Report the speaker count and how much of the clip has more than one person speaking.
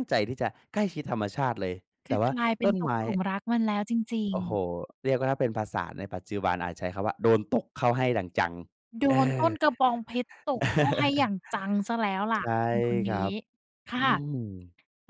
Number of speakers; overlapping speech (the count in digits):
2, about 12%